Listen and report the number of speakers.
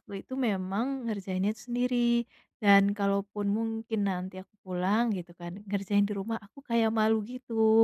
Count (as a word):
one